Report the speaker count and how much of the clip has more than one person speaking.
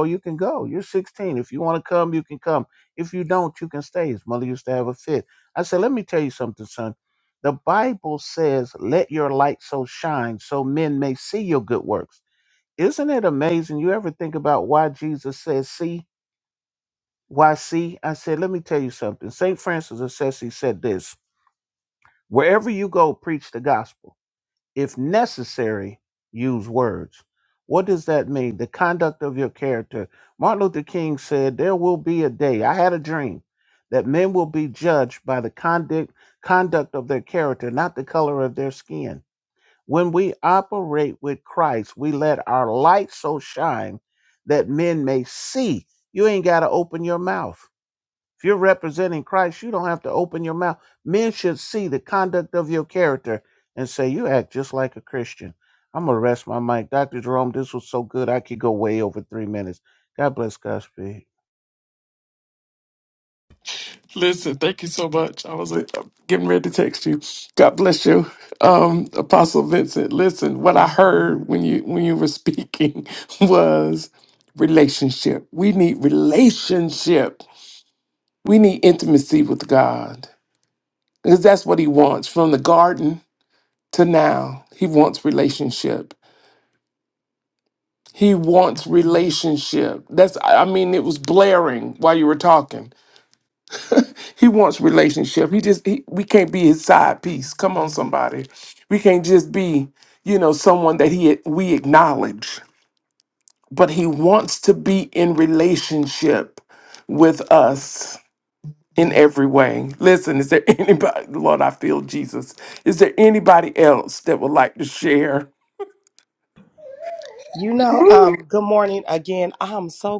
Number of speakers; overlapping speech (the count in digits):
3, no overlap